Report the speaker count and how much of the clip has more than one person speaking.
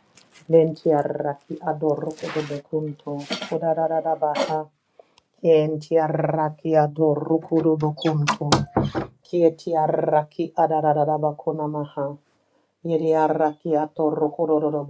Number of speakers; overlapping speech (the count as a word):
one, no overlap